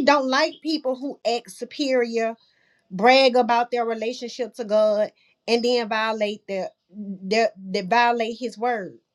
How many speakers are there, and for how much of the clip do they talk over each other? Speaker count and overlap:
1, no overlap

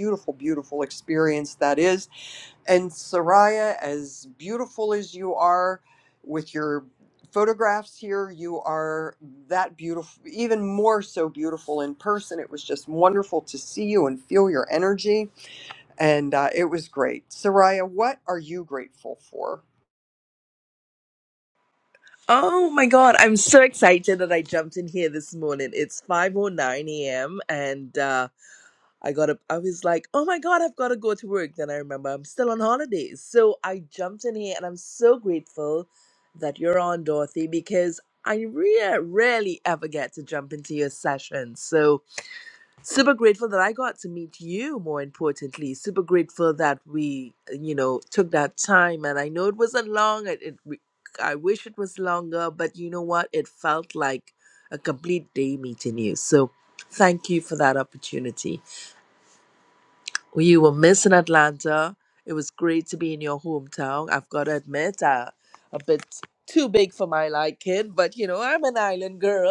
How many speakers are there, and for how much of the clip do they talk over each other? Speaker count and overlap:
2, no overlap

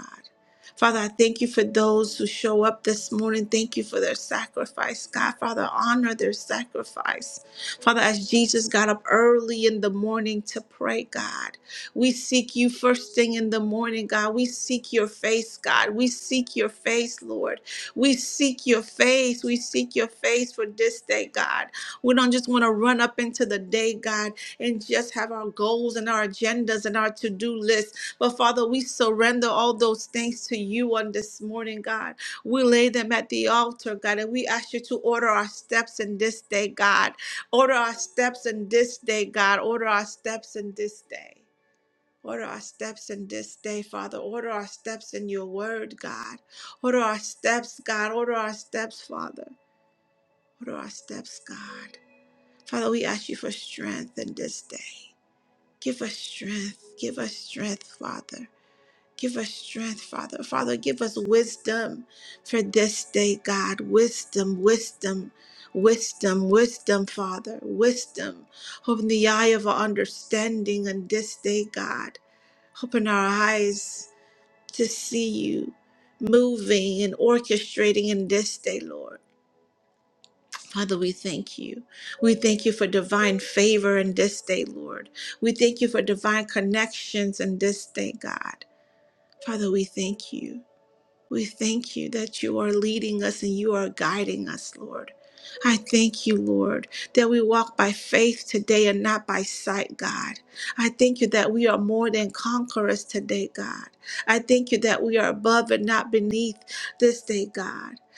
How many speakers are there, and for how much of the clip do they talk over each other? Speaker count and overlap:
1, no overlap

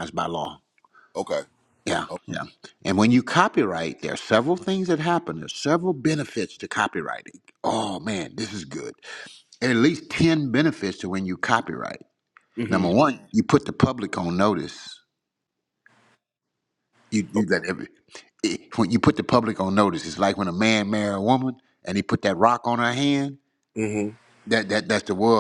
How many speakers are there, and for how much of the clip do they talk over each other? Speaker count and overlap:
2, about 1%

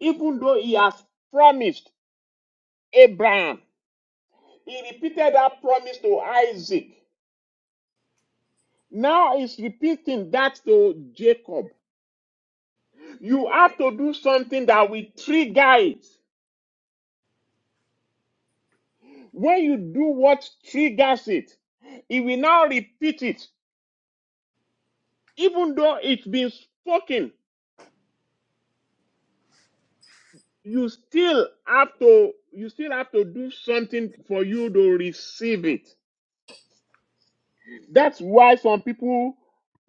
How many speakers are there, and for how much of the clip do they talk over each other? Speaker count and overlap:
1, no overlap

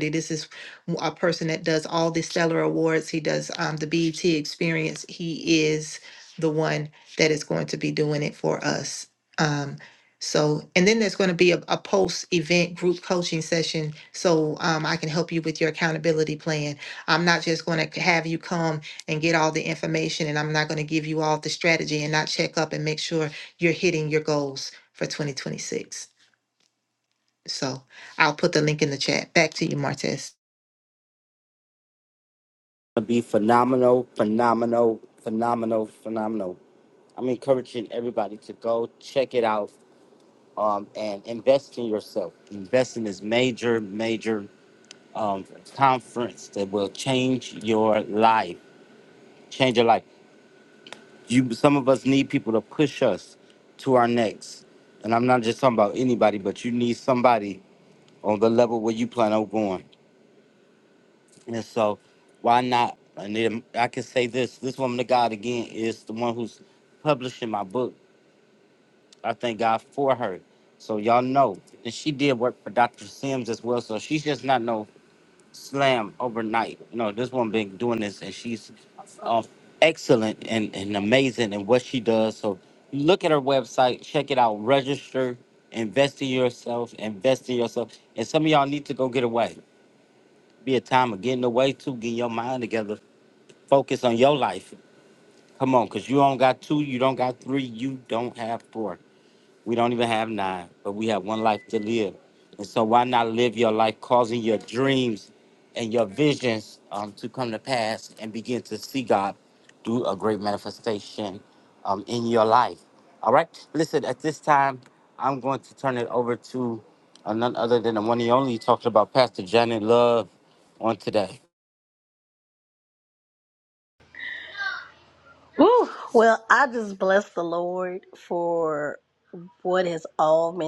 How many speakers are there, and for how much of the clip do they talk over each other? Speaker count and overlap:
3, no overlap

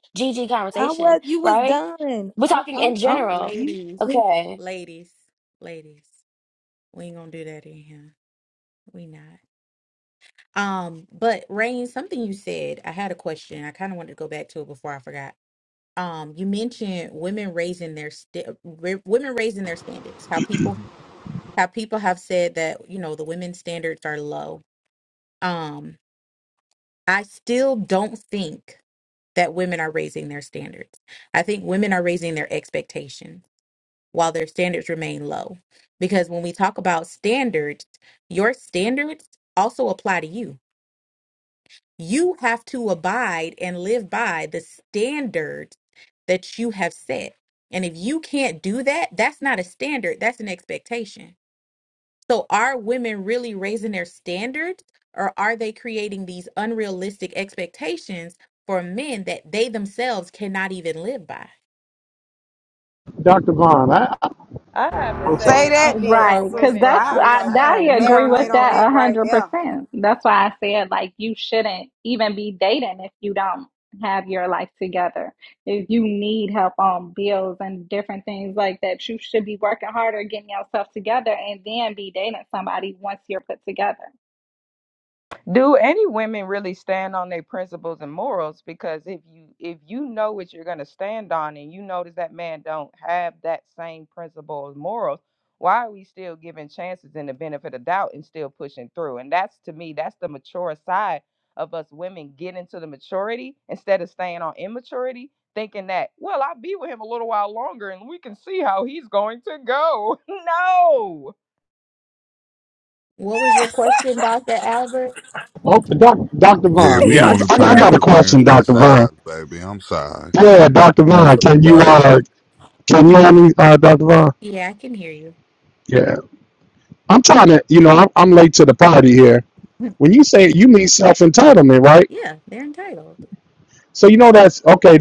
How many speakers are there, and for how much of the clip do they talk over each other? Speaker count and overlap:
7, about 8%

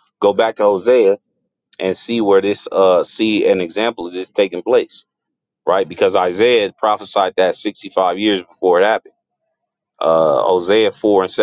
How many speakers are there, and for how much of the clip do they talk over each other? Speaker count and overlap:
1, no overlap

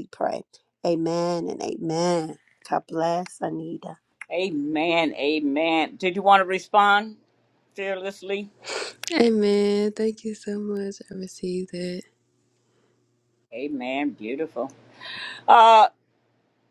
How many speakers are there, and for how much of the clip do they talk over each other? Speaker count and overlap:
3, no overlap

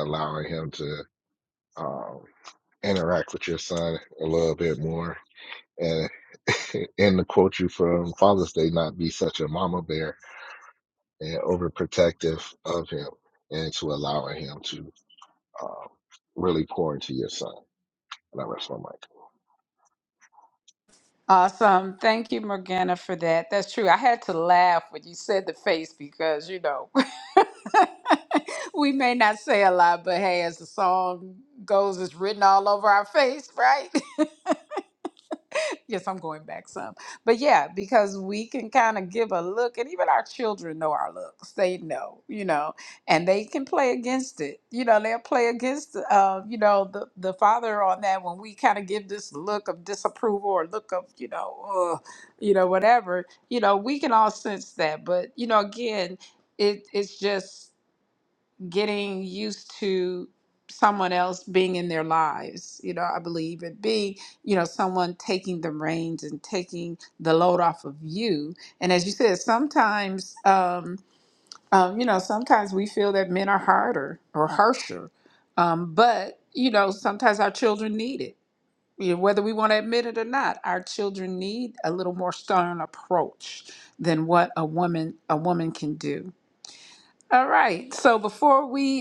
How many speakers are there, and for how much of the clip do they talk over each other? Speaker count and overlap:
2, no overlap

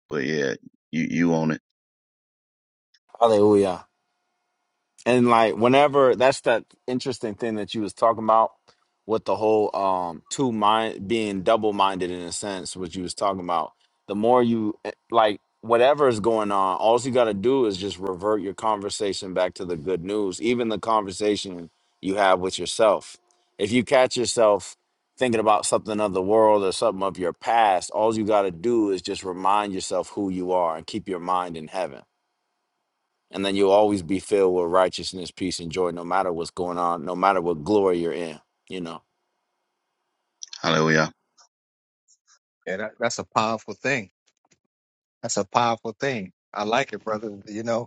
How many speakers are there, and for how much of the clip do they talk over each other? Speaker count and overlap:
3, no overlap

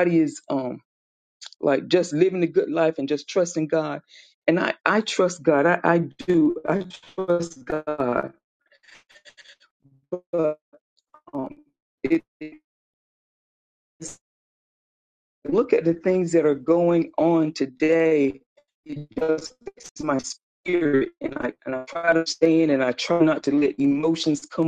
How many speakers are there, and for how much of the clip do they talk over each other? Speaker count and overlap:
1, no overlap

